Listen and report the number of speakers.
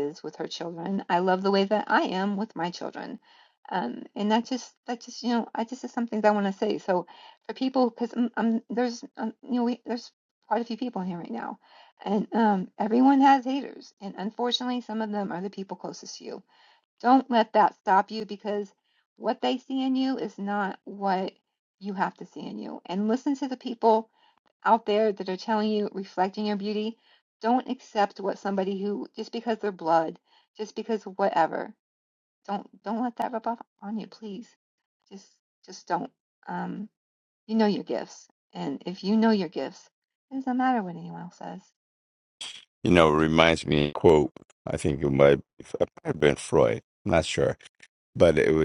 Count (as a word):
two